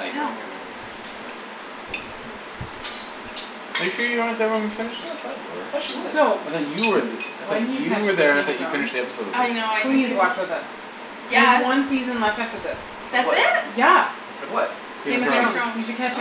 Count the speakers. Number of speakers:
four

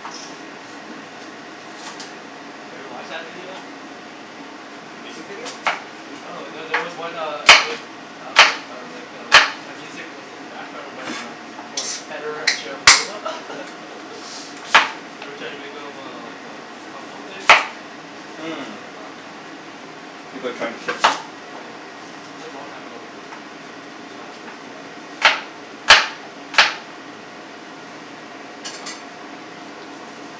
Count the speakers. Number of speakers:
two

